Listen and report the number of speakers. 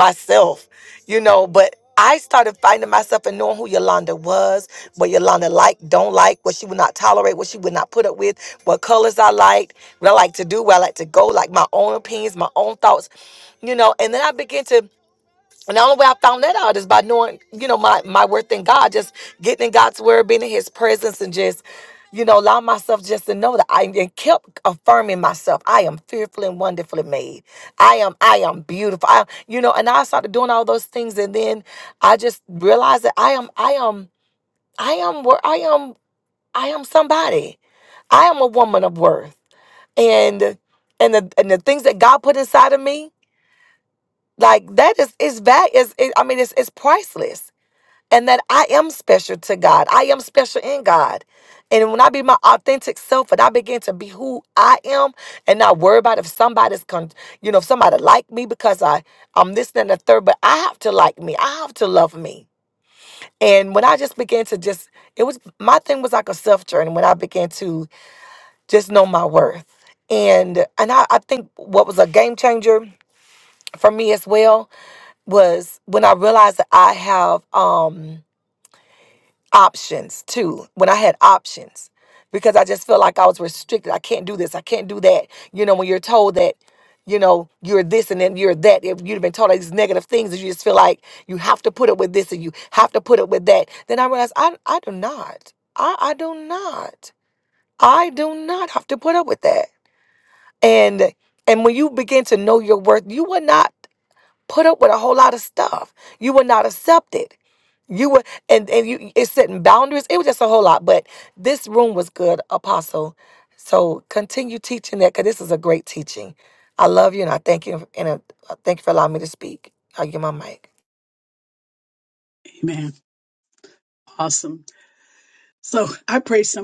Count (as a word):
two